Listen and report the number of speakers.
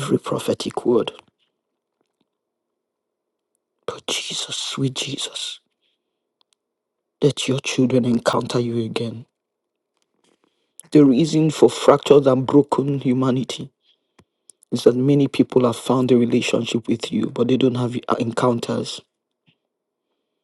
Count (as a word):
one